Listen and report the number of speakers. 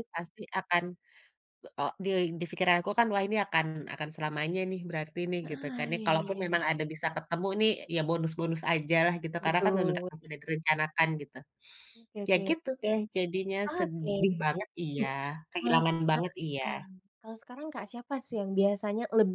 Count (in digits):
2